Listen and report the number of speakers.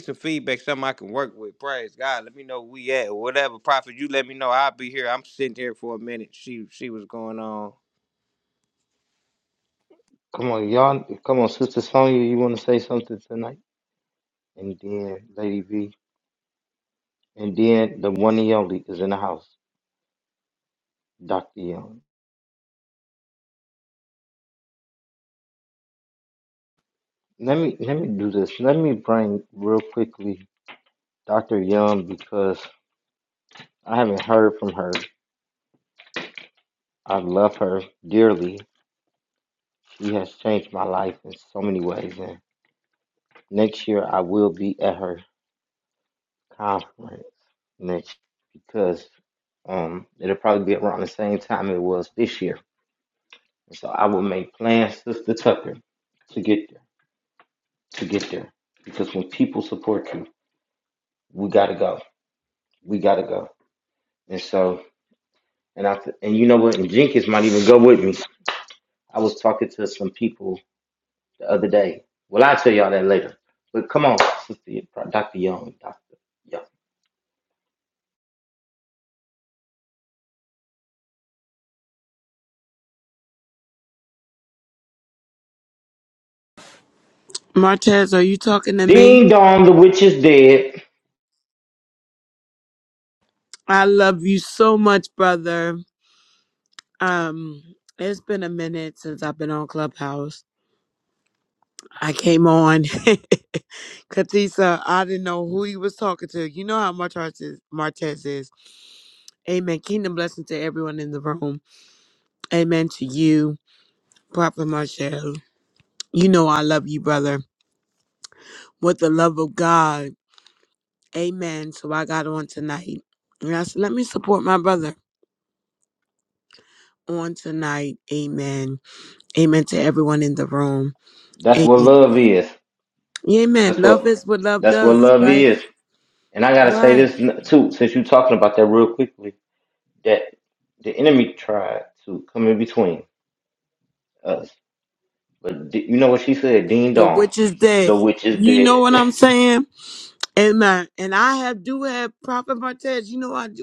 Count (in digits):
3